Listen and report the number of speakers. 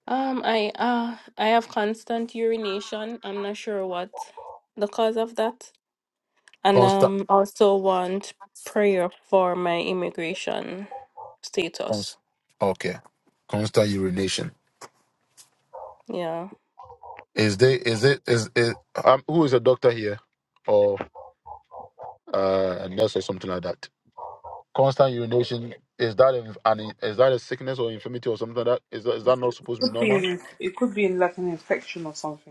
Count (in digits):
3